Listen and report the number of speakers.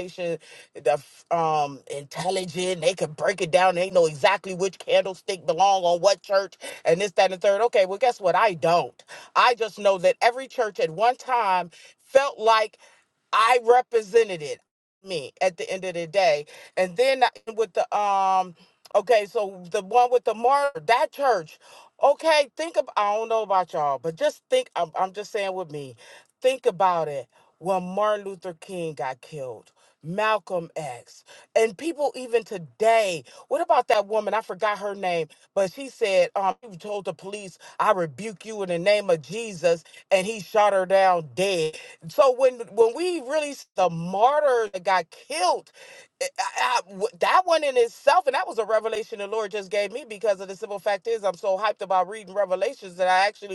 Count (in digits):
1